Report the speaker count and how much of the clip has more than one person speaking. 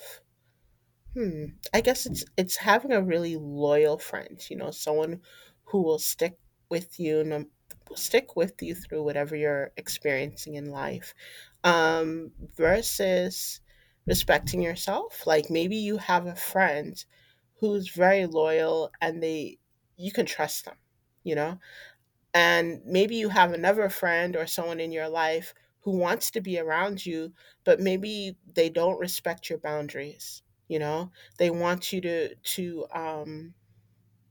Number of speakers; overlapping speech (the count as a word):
one, no overlap